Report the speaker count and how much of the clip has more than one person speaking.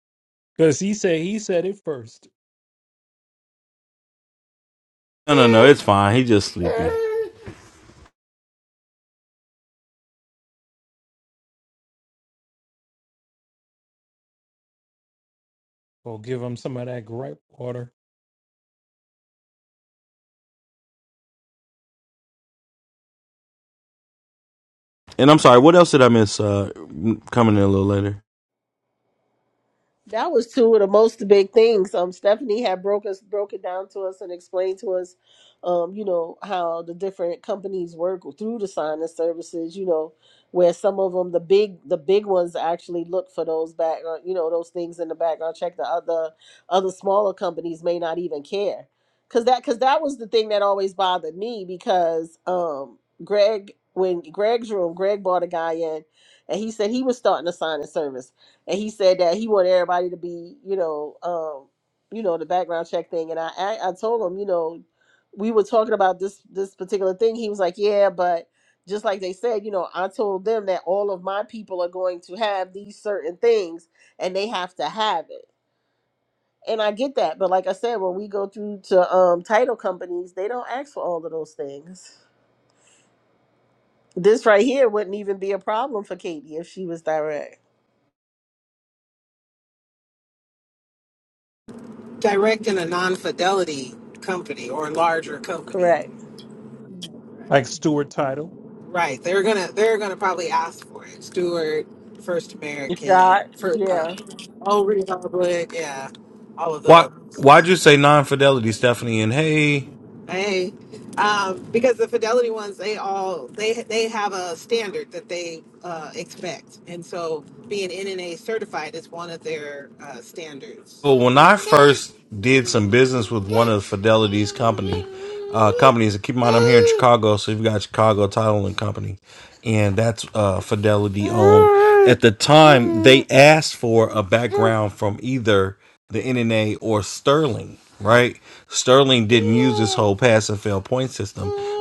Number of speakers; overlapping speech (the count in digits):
4, about 1%